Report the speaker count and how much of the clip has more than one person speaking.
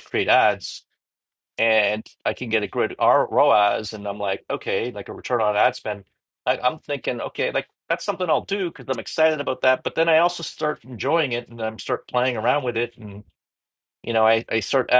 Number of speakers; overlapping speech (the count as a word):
one, no overlap